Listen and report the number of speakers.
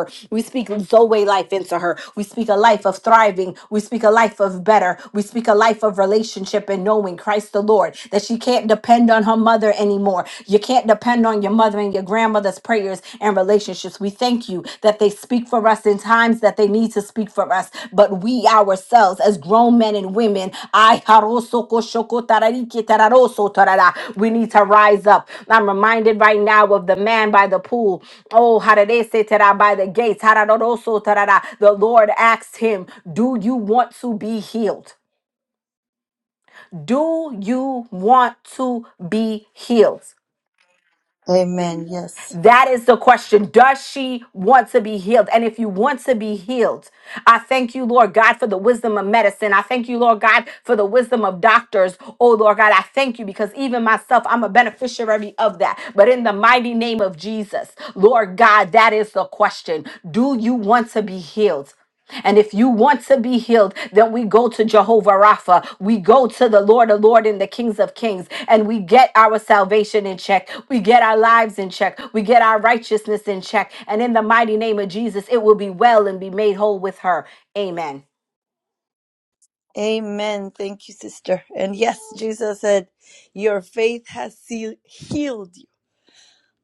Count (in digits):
2